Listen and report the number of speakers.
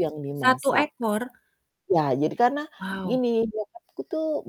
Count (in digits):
2